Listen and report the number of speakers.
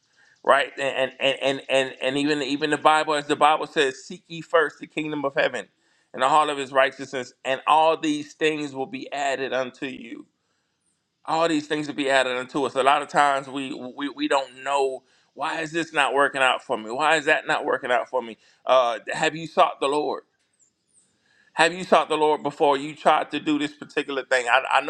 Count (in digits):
1